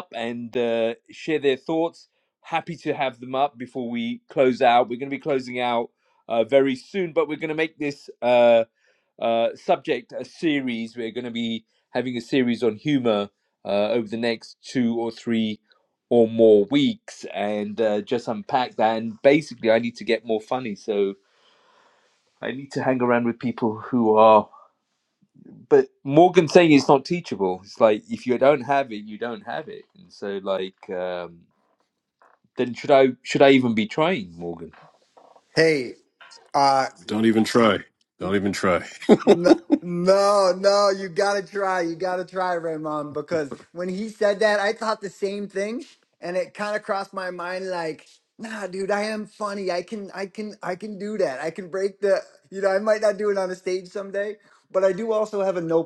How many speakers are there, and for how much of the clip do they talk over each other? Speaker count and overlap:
three, no overlap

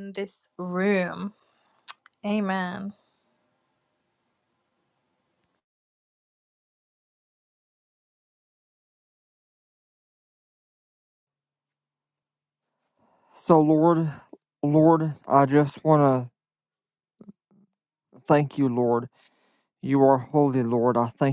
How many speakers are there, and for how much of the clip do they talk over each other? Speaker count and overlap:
two, no overlap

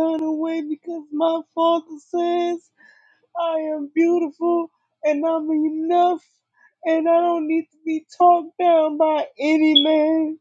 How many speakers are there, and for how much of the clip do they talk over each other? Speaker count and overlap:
one, no overlap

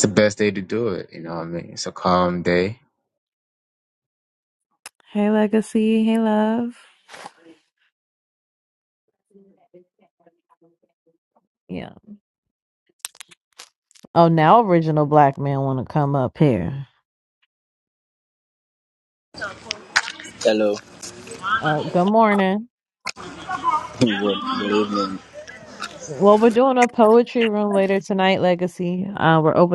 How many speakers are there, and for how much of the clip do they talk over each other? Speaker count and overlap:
three, no overlap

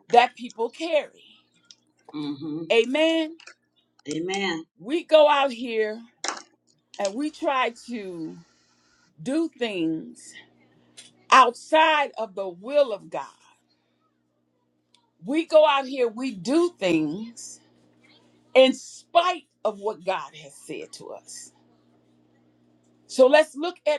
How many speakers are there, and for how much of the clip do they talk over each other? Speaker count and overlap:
two, no overlap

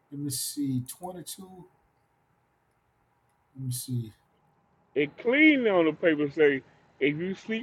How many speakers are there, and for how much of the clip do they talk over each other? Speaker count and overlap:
two, no overlap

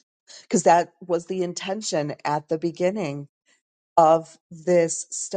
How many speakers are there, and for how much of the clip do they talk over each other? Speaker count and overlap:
one, no overlap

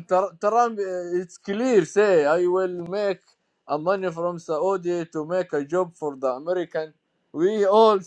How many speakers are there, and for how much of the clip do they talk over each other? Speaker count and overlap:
one, no overlap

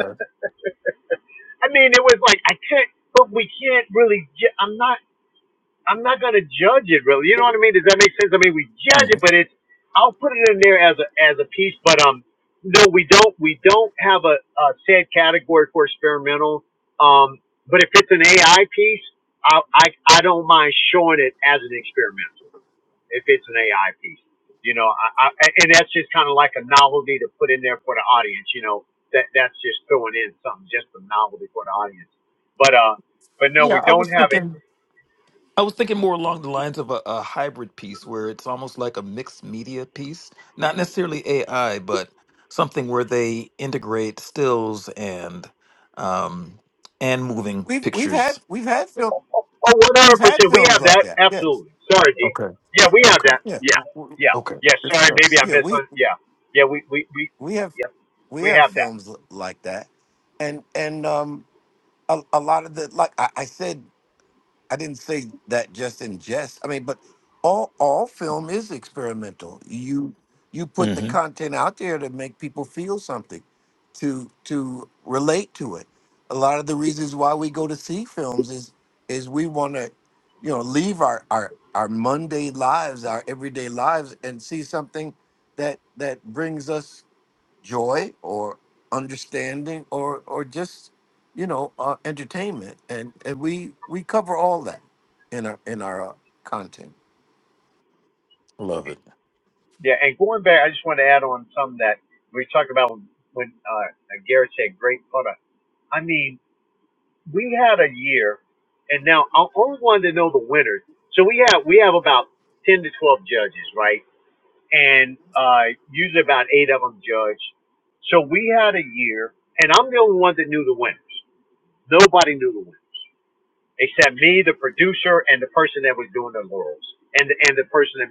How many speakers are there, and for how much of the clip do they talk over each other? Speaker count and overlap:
three, about 5%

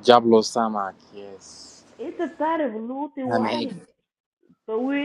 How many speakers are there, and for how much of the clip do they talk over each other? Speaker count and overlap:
two, about 8%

